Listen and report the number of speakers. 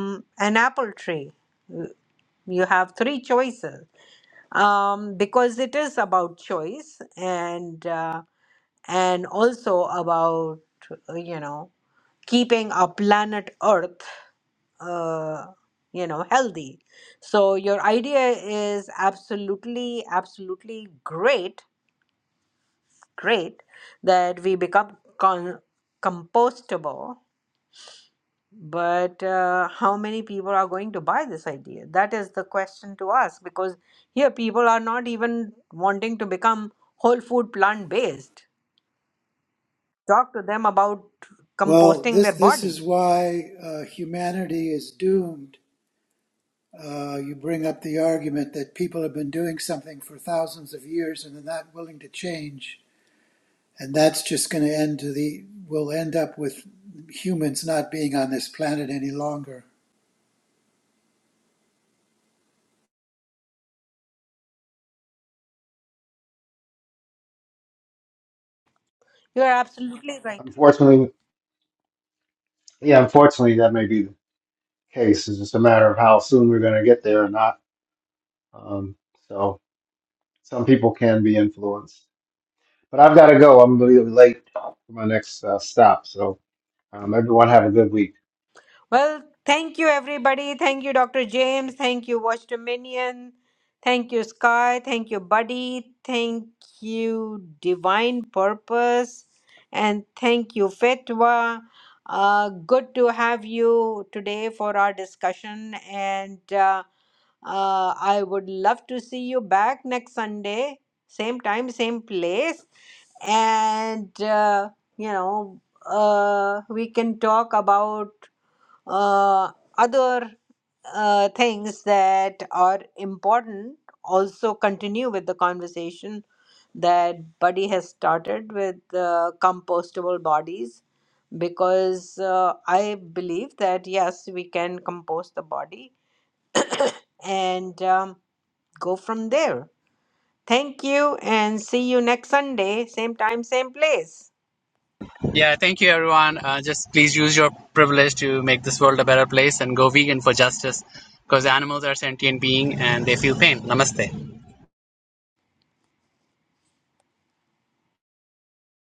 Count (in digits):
4